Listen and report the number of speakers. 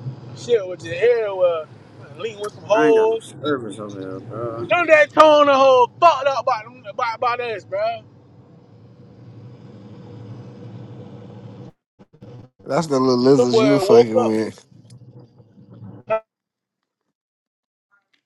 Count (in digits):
3